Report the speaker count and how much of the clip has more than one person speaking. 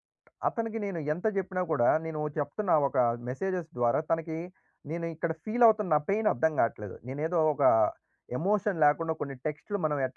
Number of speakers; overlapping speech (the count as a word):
one, no overlap